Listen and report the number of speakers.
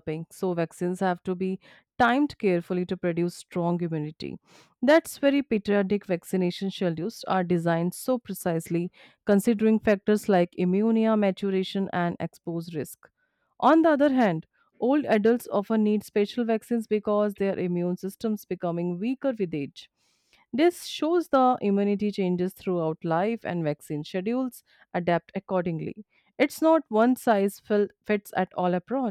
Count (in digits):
1